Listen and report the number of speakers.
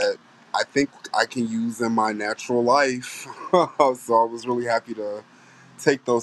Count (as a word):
one